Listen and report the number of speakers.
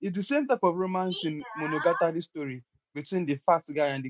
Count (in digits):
1